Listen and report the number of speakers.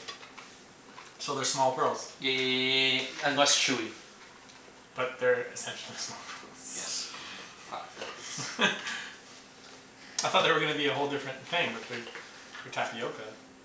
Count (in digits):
2